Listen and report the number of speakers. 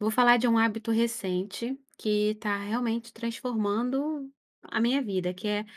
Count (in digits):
1